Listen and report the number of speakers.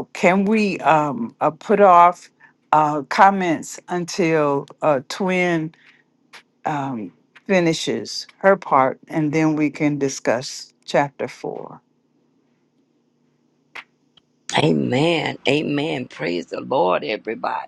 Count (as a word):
two